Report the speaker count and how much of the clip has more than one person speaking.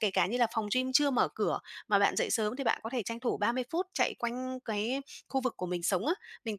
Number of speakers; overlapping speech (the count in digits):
1, no overlap